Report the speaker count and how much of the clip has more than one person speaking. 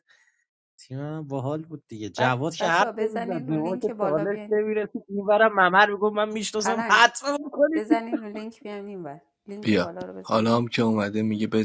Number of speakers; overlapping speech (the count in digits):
3, about 31%